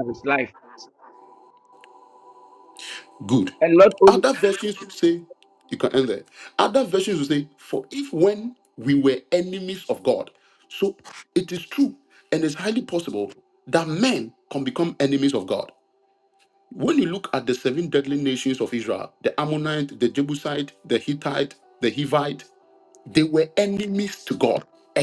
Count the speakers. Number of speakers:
2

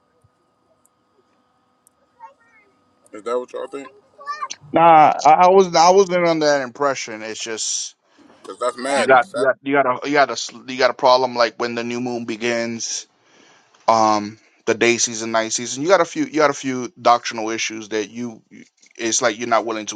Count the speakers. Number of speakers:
2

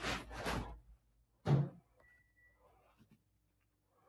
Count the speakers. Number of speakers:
0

